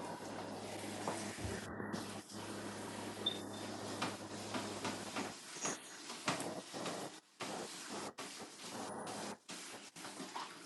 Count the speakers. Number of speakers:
zero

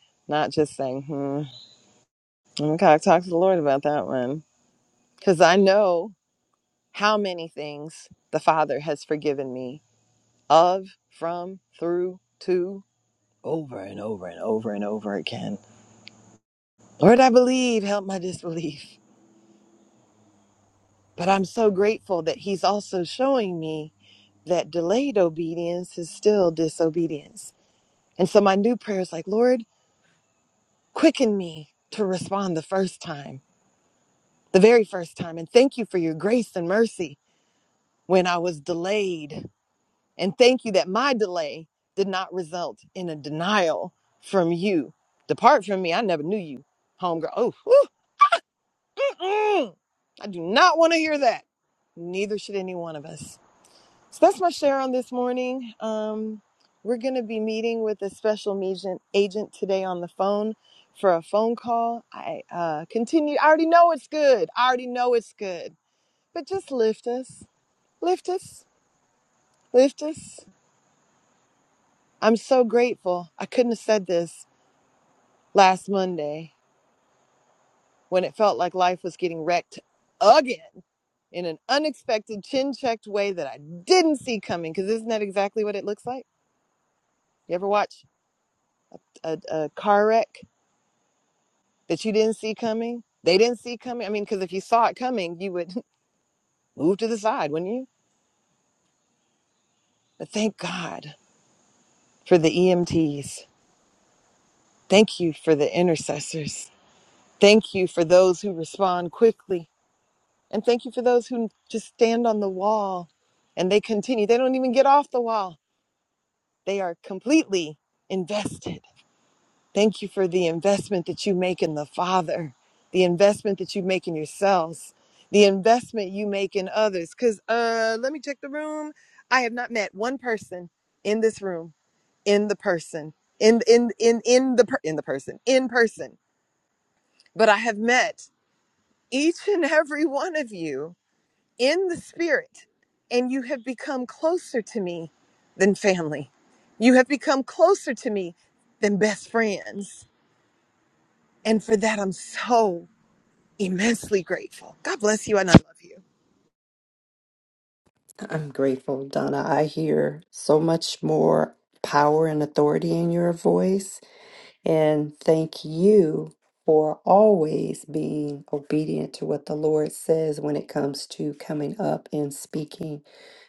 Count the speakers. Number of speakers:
two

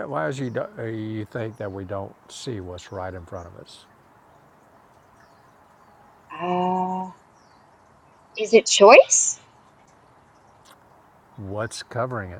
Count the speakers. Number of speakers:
two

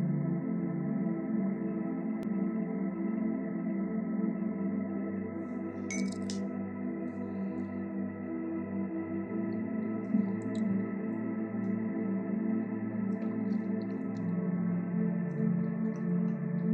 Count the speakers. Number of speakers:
zero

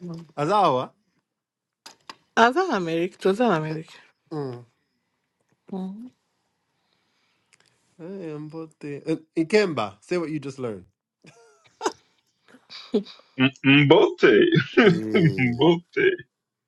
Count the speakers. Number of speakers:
three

